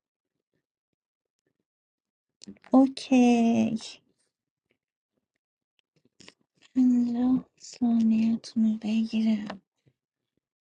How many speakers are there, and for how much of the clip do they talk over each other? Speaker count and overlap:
1, no overlap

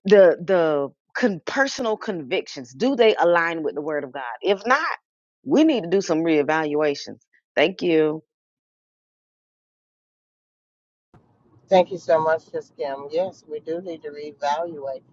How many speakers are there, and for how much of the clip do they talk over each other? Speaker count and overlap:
2, no overlap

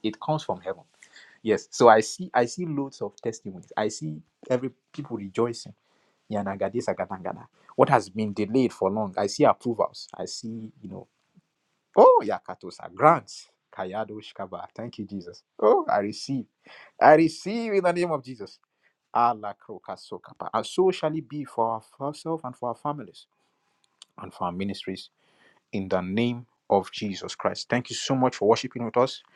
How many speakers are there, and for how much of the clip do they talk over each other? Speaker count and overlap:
1, no overlap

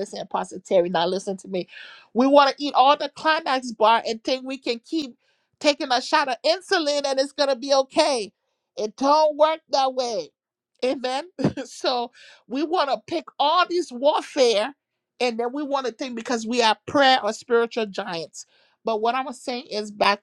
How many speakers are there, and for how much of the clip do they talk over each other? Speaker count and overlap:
1, no overlap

